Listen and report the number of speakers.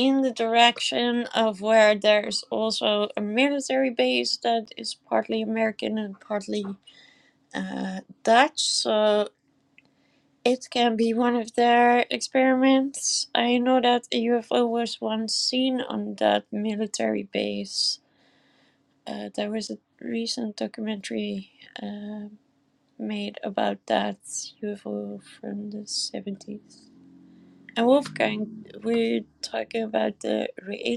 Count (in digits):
1